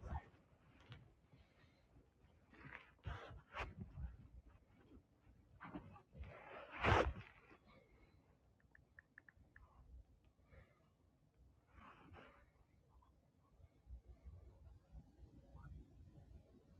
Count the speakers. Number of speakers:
0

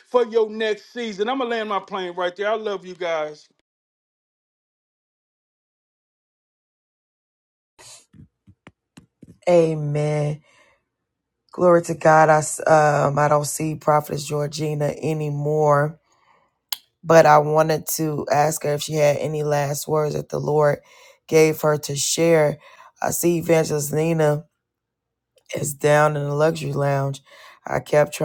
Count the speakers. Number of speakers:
2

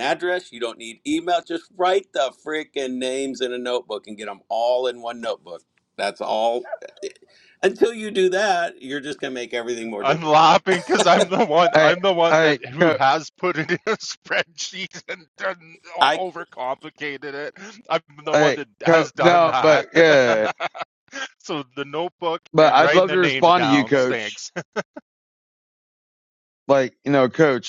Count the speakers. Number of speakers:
3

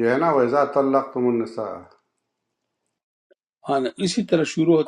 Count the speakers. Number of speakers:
2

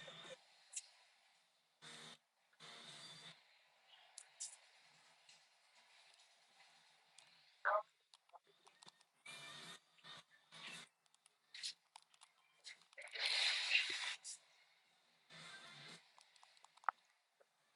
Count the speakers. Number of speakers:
0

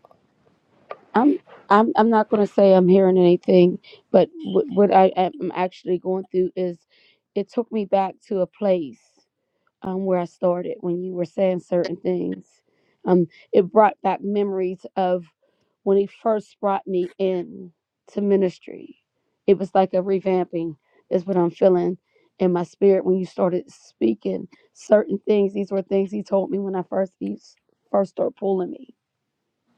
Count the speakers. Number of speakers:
1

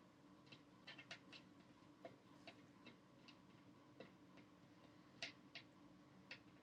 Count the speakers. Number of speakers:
0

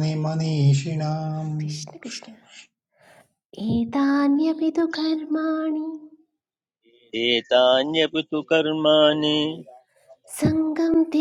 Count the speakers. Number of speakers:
3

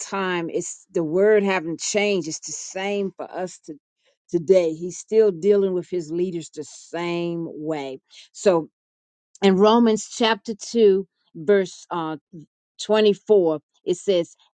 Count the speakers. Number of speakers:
1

